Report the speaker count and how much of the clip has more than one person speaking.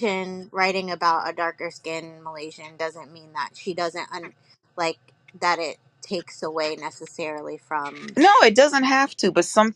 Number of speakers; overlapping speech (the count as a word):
two, no overlap